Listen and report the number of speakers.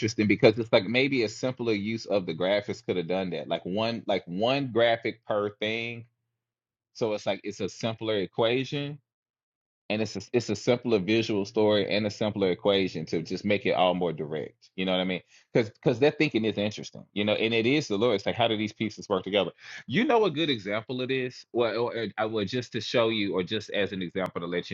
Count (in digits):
1